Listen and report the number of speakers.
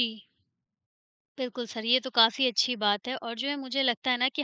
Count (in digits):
1